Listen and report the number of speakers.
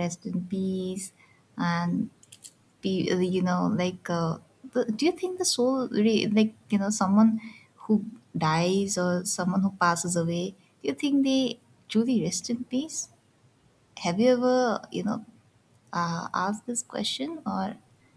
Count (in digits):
1